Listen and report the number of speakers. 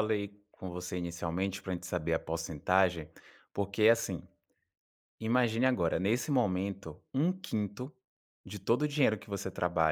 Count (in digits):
1